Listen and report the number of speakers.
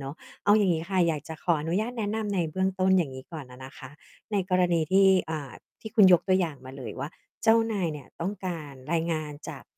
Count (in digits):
1